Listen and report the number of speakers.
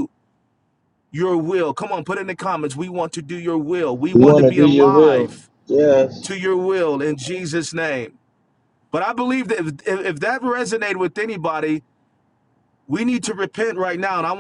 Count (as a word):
two